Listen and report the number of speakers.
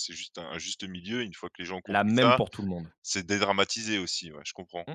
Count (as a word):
two